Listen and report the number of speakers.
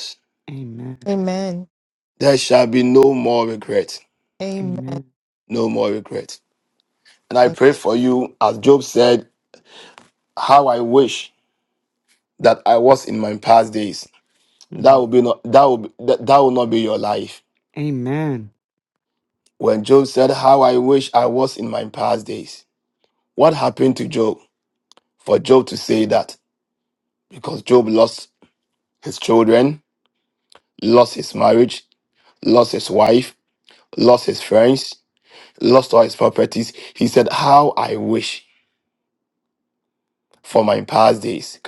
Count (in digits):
3